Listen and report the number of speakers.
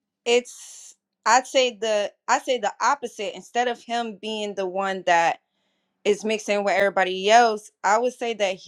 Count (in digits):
1